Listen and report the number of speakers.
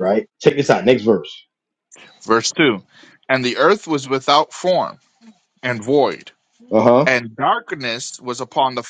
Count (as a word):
two